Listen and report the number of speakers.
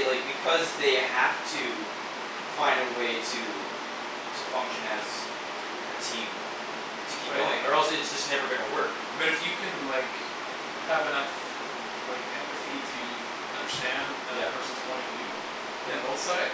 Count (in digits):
2